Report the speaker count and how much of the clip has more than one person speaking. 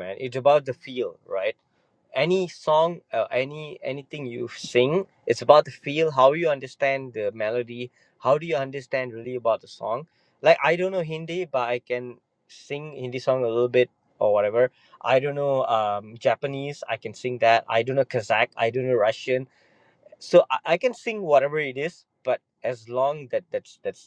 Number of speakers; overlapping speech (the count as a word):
one, no overlap